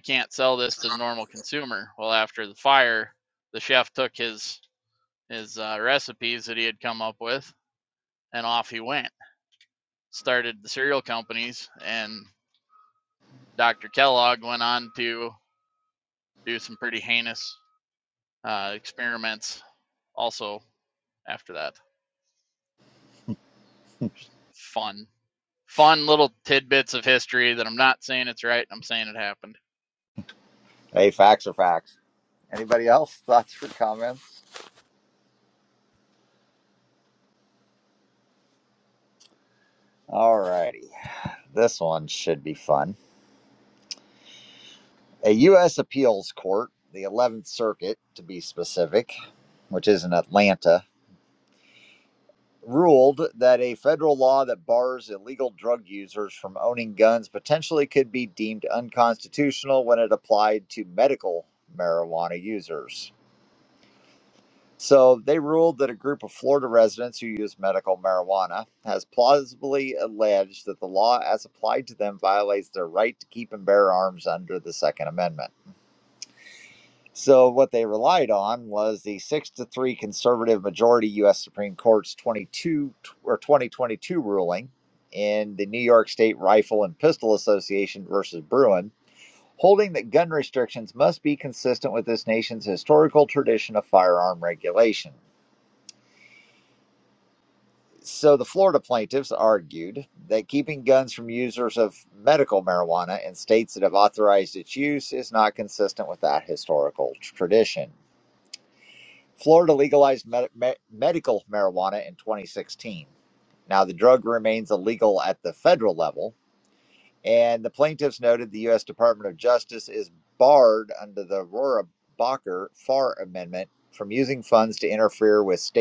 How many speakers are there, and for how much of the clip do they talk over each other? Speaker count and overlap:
2, no overlap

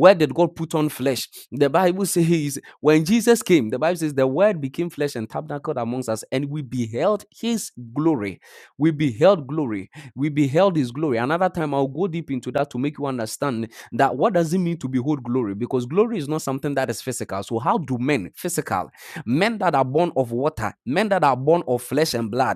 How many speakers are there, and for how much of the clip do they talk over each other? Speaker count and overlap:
1, no overlap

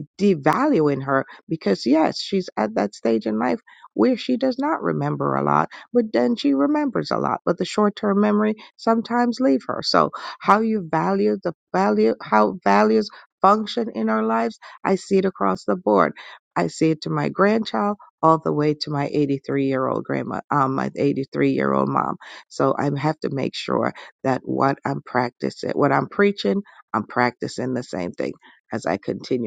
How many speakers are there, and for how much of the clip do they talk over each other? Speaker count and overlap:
1, no overlap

